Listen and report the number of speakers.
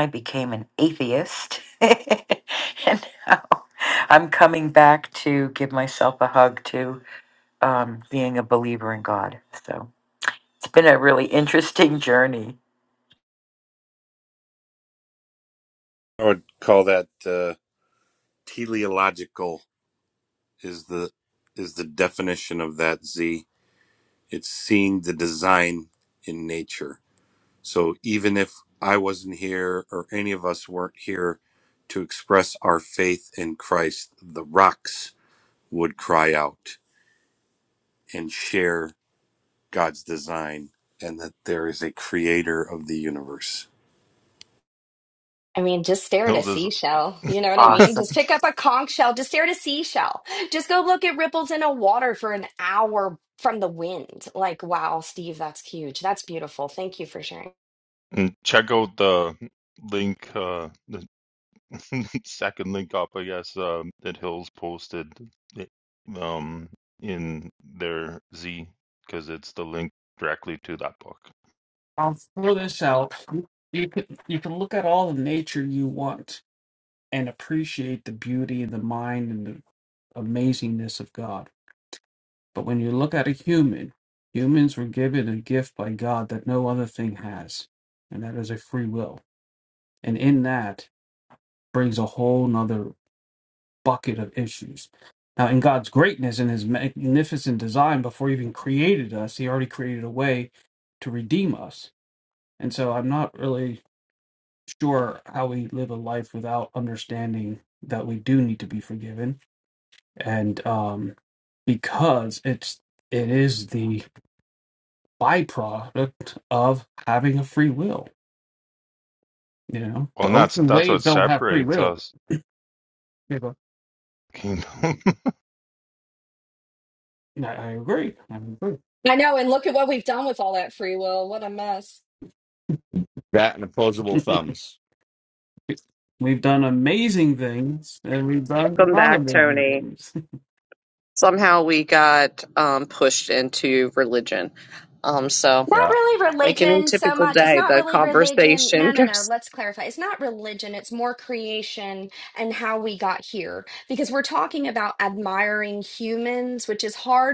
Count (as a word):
seven